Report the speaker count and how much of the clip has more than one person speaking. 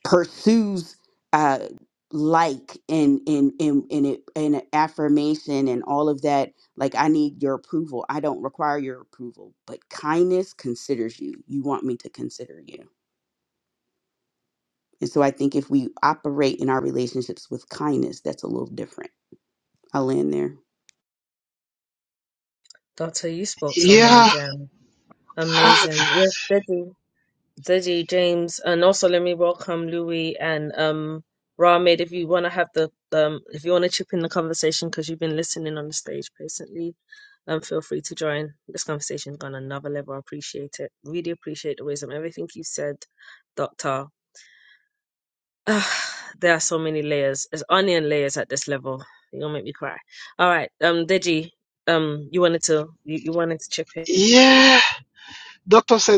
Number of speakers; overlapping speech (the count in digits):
3, about 1%